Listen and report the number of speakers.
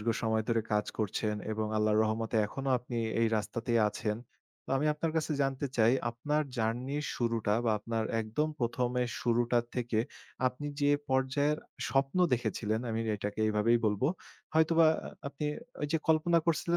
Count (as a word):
one